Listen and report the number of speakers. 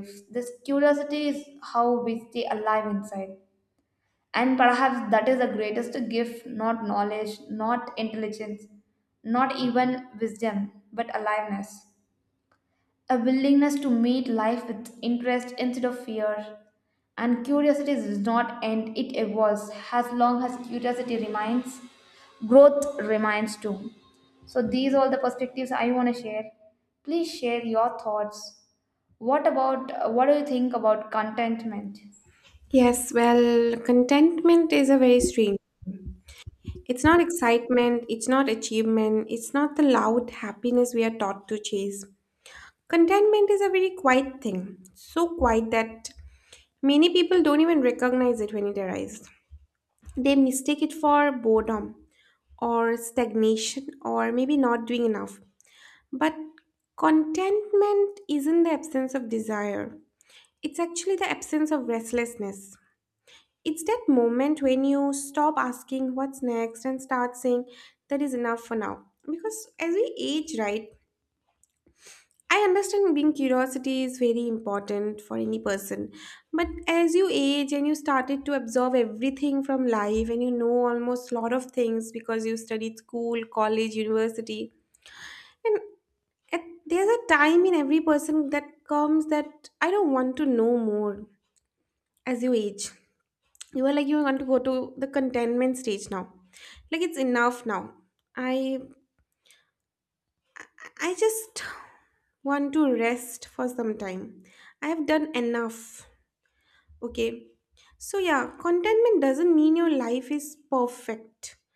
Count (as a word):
two